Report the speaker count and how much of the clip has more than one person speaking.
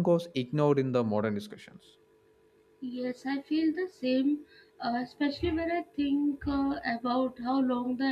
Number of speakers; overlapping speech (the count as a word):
two, no overlap